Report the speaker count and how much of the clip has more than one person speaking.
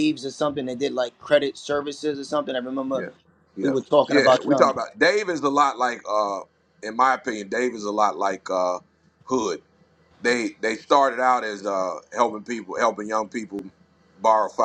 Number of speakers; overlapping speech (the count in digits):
2, about 6%